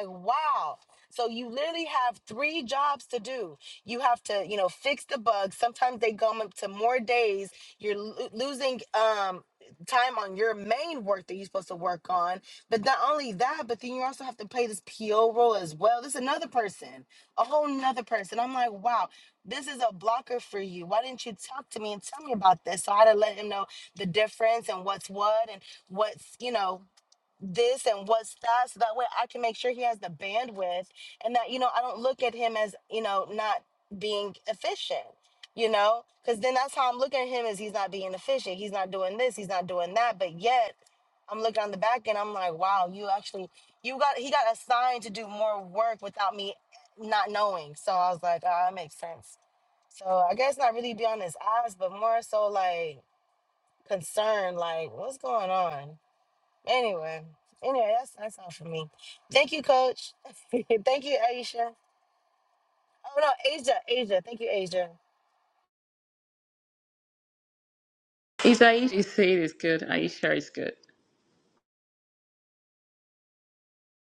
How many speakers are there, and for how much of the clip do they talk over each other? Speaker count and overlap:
two, no overlap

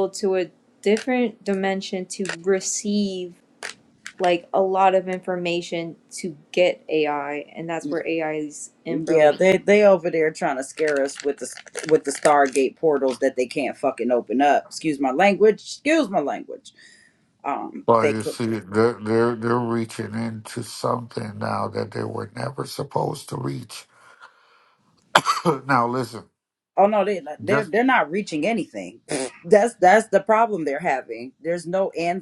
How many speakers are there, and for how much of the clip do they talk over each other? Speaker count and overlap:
three, about 4%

